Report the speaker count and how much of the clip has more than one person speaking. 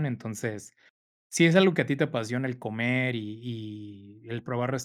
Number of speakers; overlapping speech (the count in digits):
1, no overlap